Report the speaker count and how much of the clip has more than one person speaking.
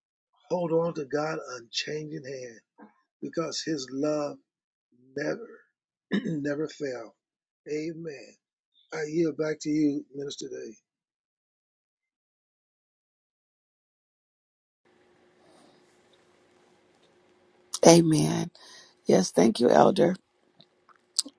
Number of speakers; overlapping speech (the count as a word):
two, no overlap